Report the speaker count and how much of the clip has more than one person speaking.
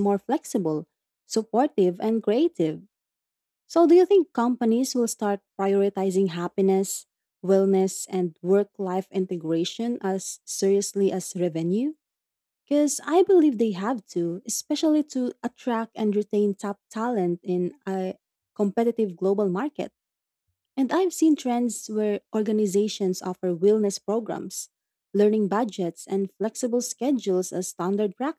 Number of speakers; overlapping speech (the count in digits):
1, no overlap